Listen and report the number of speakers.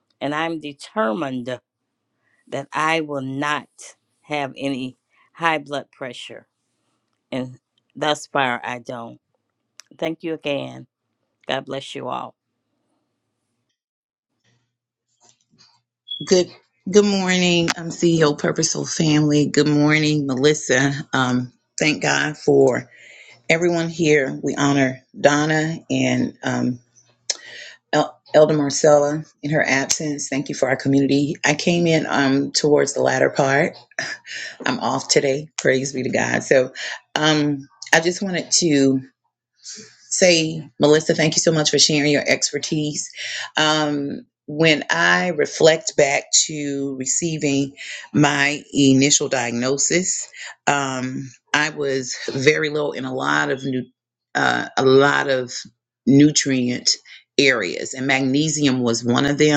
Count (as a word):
two